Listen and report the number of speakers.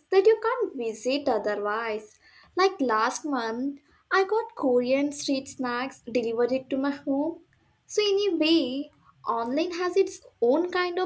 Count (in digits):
1